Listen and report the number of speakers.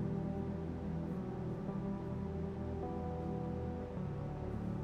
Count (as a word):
zero